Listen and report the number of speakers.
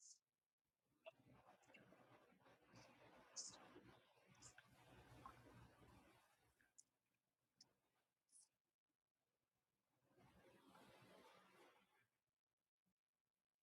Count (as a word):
zero